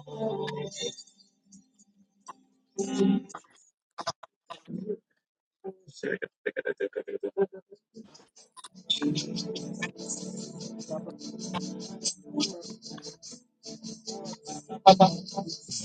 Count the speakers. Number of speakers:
zero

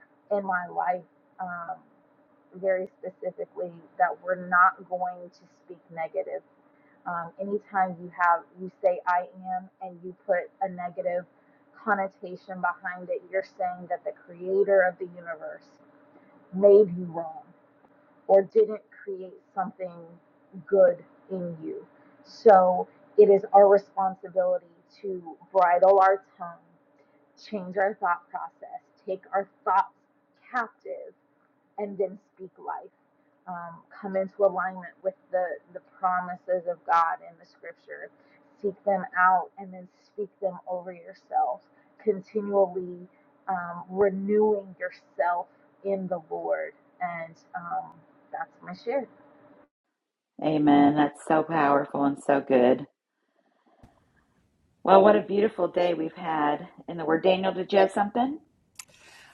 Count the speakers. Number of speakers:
two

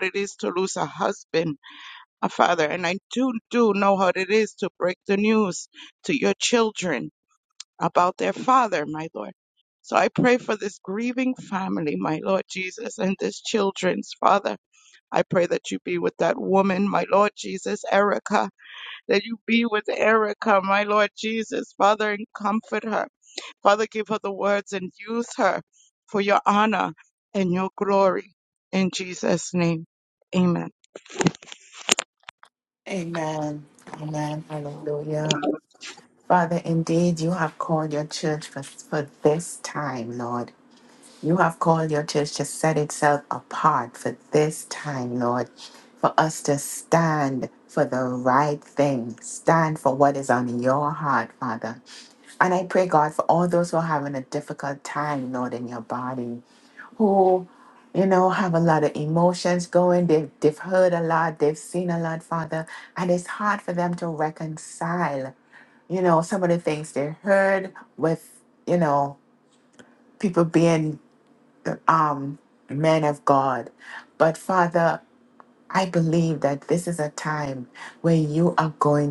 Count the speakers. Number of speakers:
two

